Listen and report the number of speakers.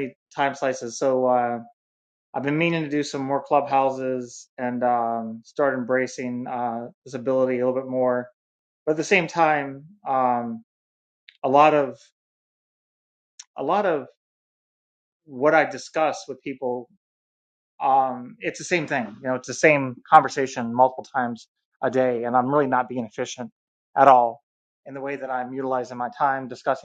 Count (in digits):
1